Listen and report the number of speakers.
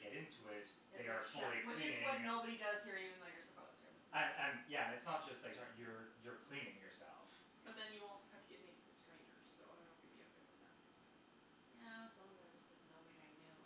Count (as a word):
three